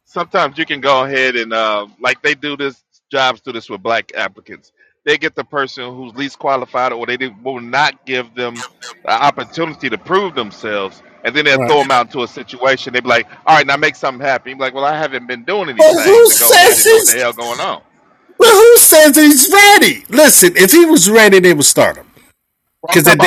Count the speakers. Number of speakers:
2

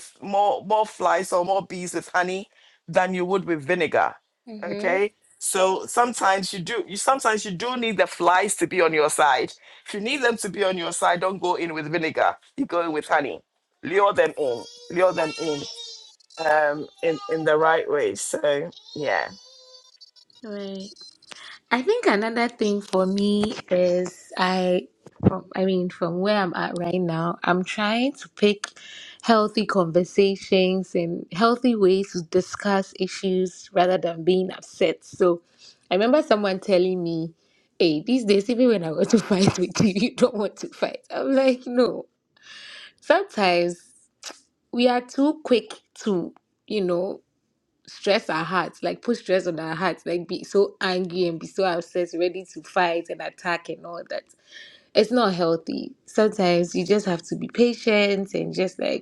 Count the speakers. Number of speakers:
2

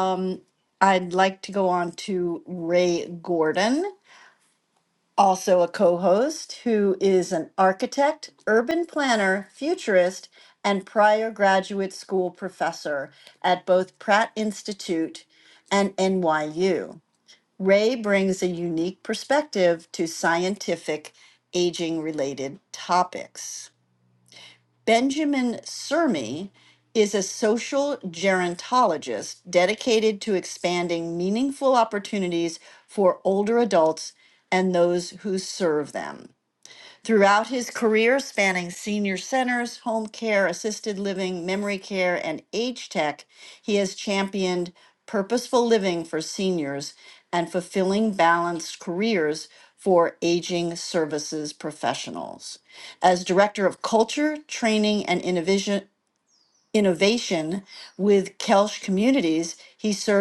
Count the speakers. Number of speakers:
1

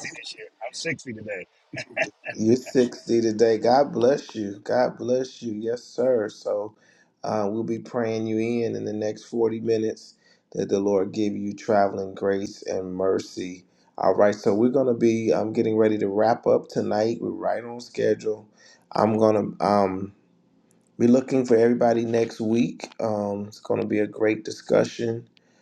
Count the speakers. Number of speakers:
2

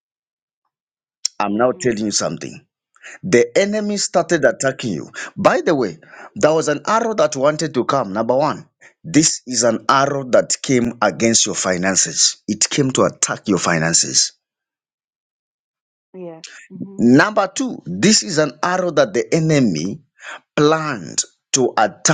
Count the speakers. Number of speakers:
2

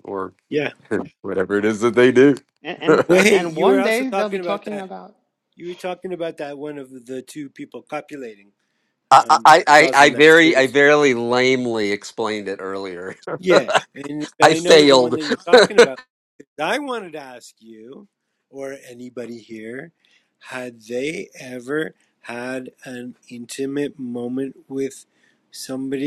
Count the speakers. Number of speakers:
3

